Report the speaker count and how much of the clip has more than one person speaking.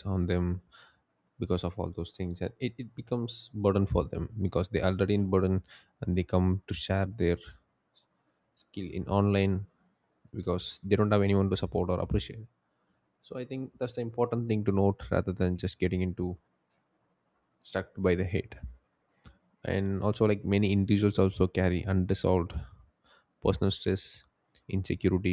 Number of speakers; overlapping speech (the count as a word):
one, no overlap